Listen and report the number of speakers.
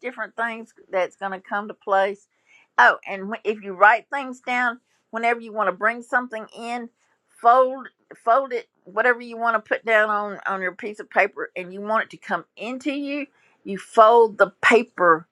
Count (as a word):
one